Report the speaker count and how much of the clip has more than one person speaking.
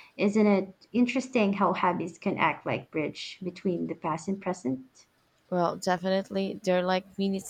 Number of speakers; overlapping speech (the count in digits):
2, no overlap